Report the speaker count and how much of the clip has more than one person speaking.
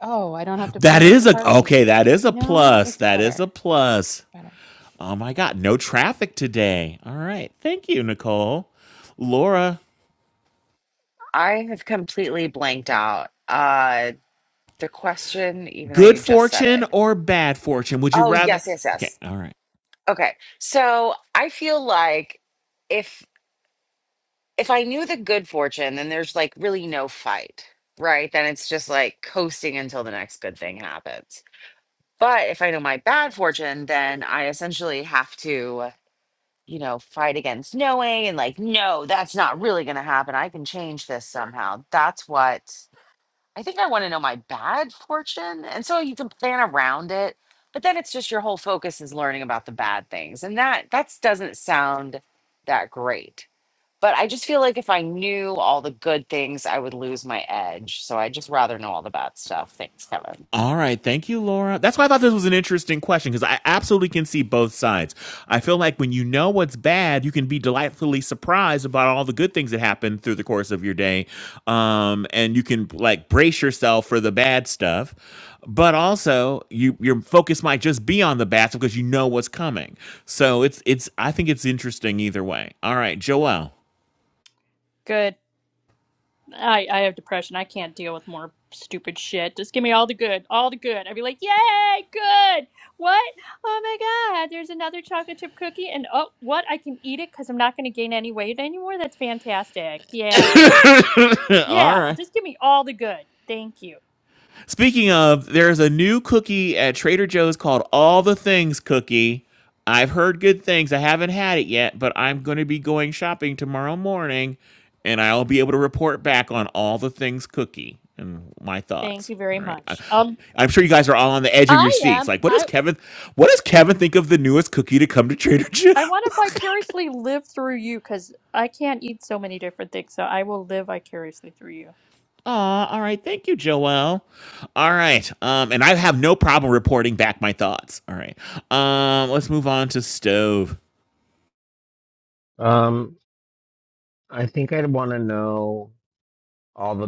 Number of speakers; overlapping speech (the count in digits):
5, about 4%